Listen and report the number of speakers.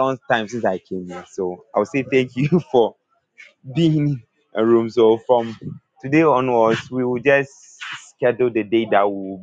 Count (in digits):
1